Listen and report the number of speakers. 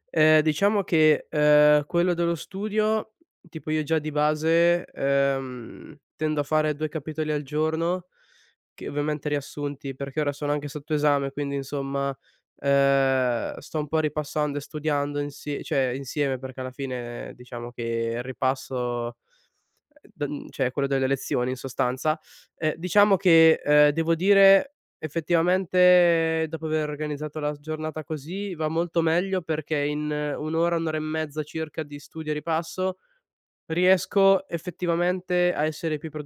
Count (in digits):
1